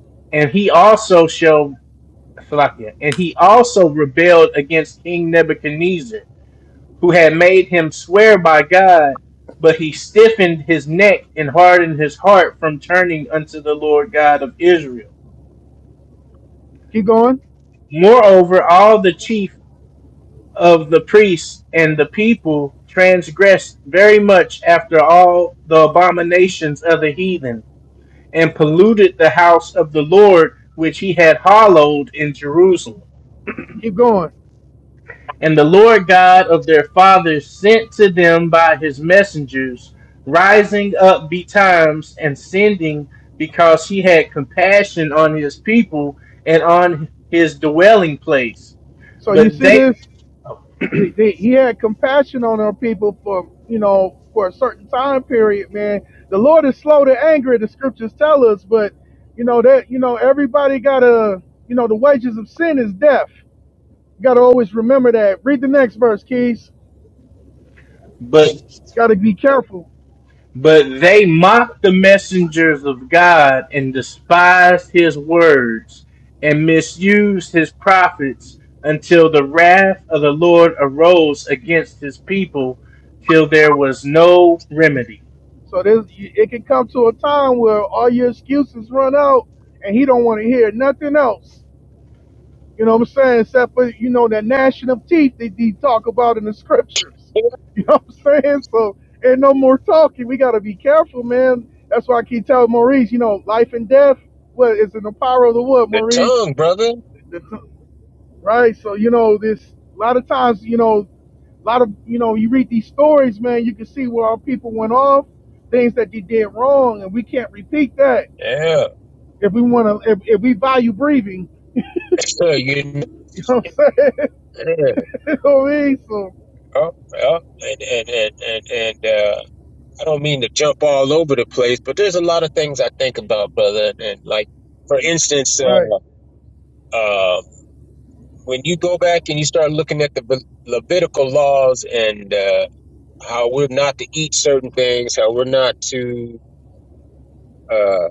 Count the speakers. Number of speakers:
3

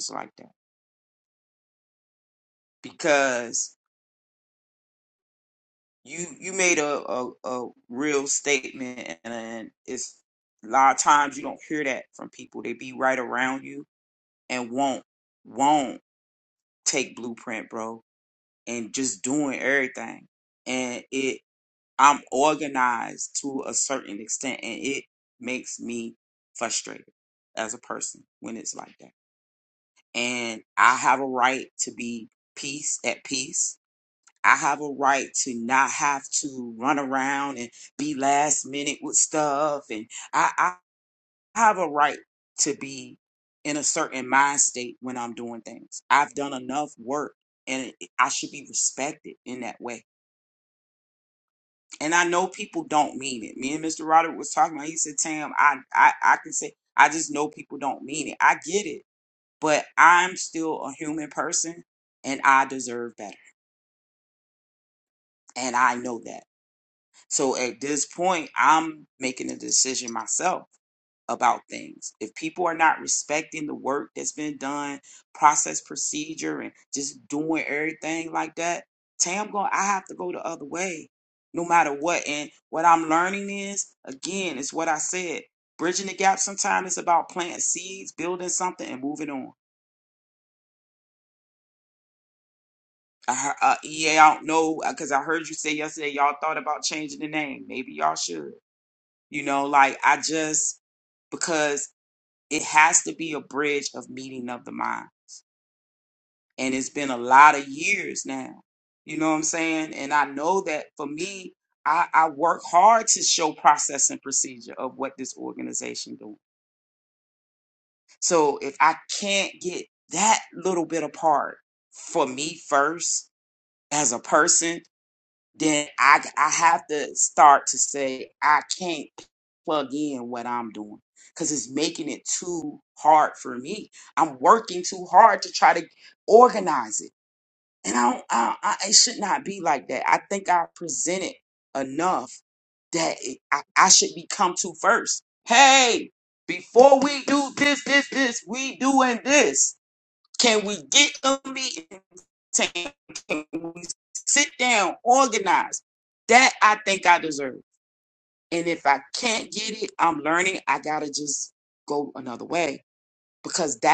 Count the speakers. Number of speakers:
1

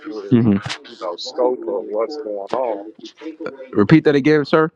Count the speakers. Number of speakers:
2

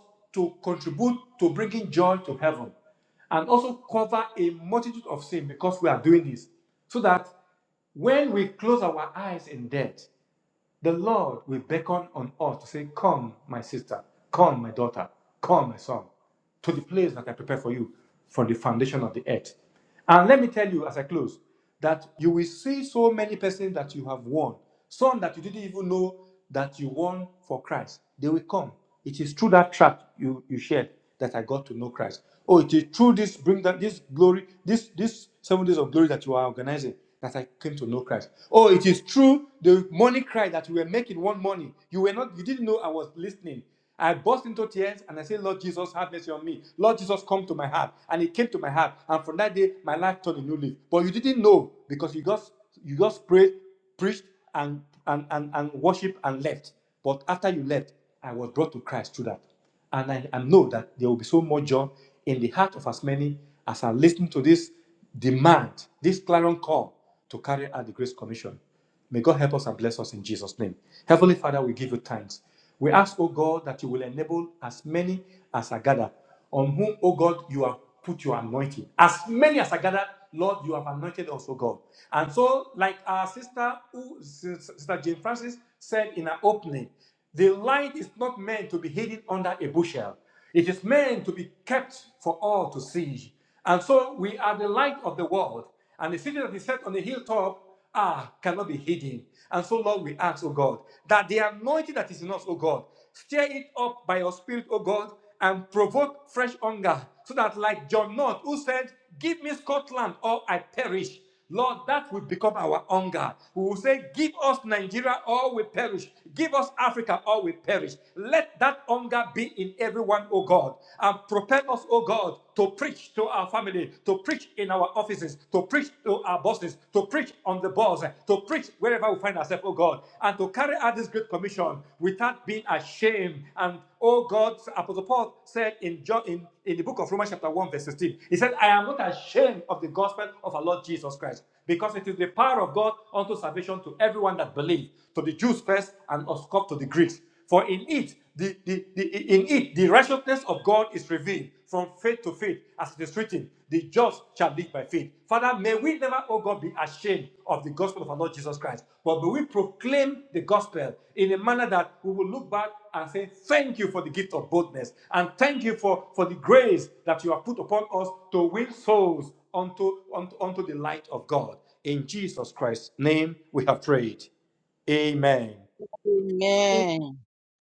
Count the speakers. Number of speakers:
2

